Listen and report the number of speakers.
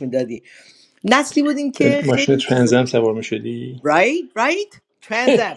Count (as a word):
two